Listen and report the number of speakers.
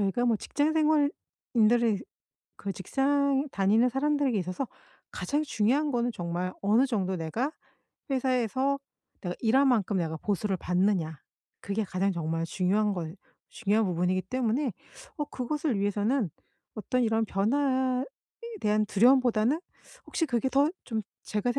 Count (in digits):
1